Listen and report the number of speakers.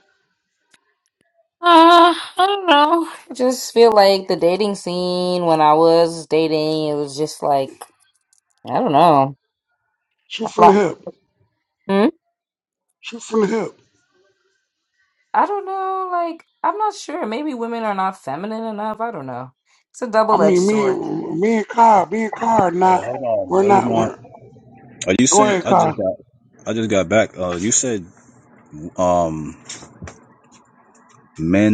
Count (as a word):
three